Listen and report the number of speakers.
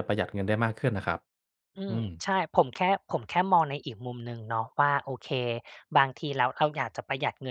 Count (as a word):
two